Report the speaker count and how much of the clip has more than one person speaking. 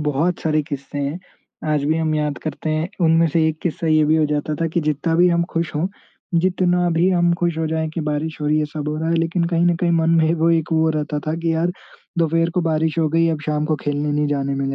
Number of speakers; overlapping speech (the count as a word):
one, no overlap